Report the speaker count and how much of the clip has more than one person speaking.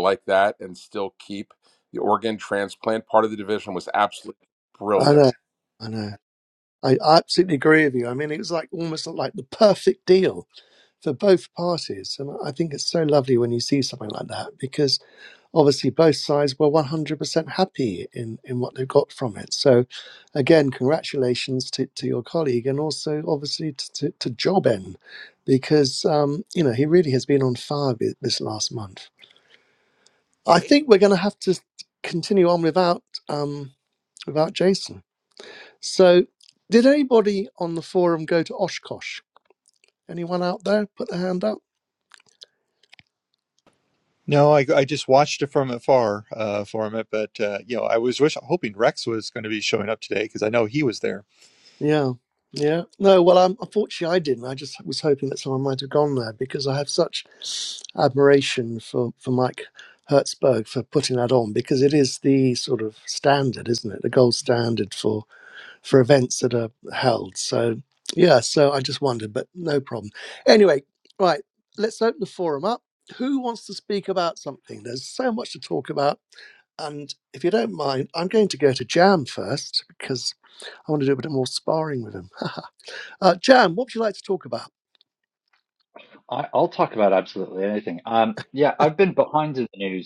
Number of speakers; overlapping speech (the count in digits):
4, under 1%